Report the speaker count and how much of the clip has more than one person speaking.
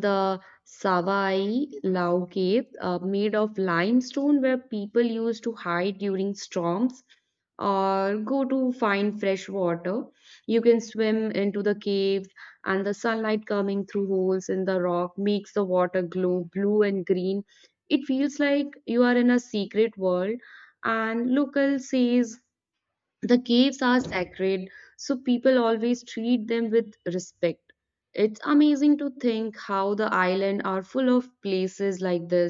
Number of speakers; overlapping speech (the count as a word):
one, no overlap